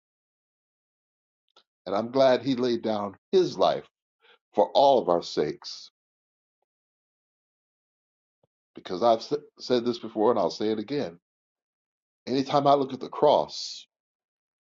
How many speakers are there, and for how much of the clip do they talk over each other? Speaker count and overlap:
1, no overlap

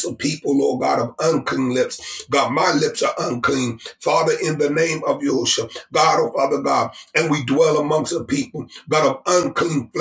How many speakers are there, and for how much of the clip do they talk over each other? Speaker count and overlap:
1, no overlap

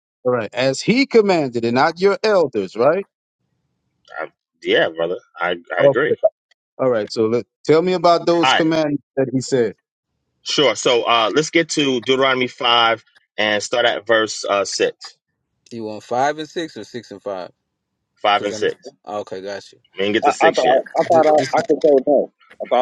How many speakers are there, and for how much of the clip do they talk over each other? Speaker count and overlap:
4, about 8%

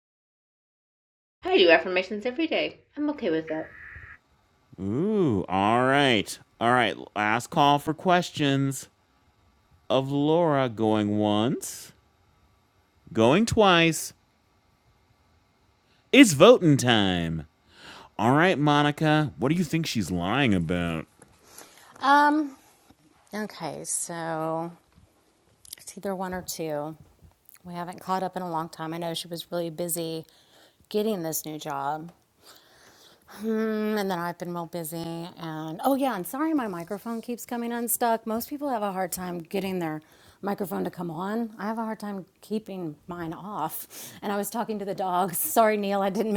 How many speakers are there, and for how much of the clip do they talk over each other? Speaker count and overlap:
3, no overlap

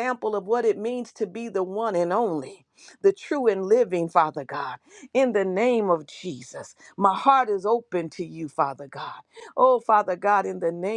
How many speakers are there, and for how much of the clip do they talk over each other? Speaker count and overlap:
1, no overlap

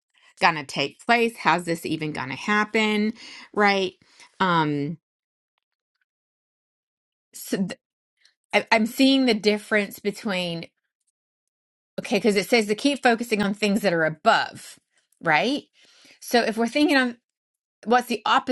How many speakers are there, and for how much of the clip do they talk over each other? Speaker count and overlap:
1, no overlap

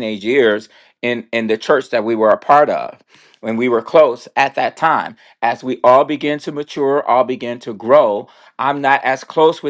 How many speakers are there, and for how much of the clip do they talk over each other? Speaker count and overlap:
1, no overlap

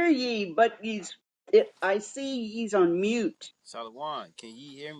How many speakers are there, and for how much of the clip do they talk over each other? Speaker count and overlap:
2, no overlap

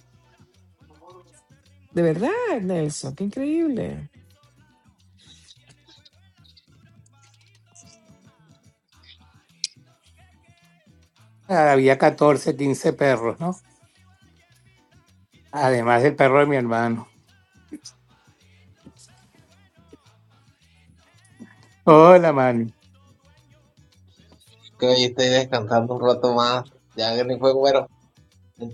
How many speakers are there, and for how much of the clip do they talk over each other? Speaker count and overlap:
3, no overlap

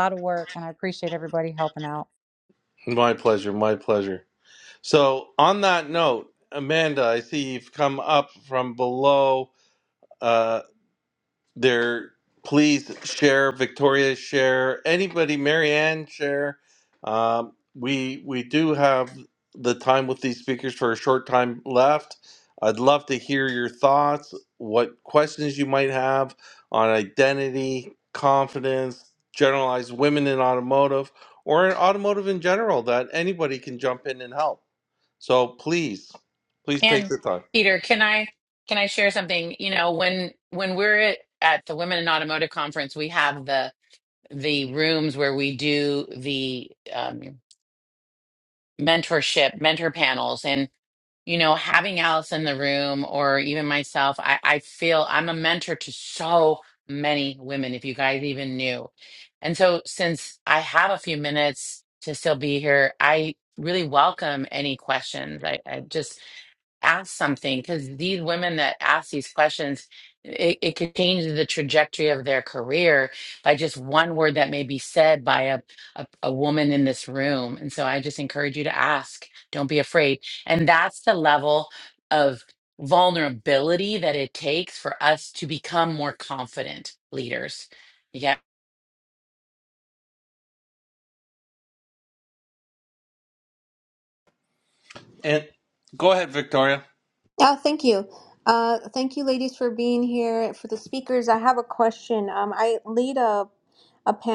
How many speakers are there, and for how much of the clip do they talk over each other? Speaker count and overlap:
4, under 1%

